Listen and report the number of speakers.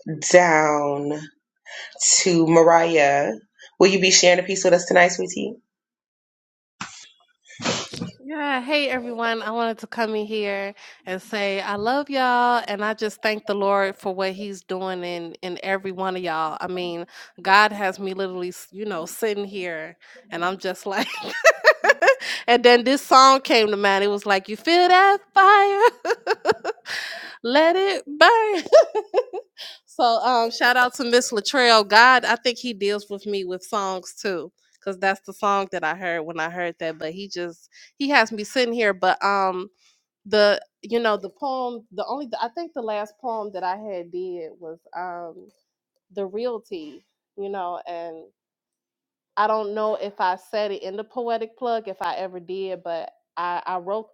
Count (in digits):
2